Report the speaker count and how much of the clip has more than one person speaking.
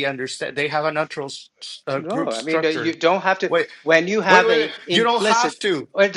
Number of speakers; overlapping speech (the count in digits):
2, about 37%